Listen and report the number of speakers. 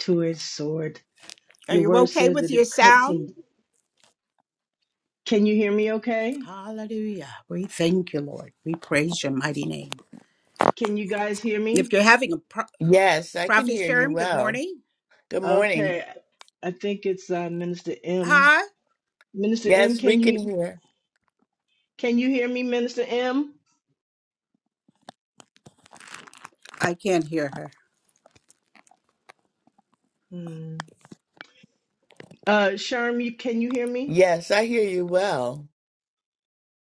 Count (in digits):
3